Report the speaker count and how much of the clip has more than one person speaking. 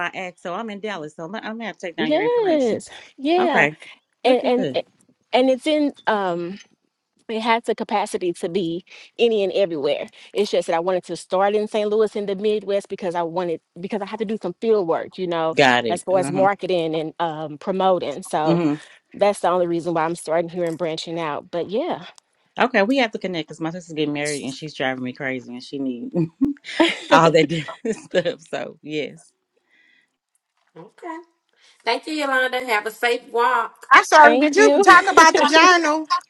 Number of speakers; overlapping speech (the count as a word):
four, about 8%